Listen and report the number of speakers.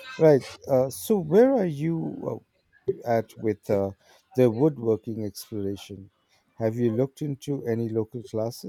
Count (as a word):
one